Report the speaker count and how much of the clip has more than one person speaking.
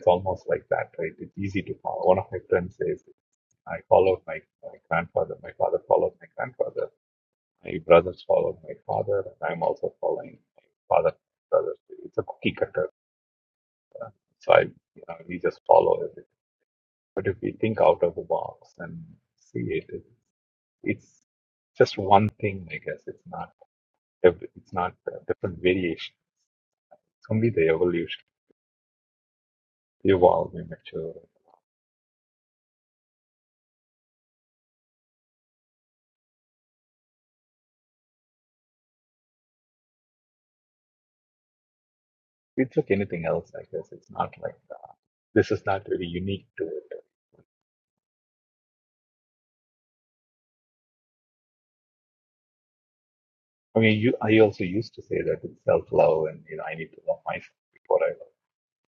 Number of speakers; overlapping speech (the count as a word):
one, no overlap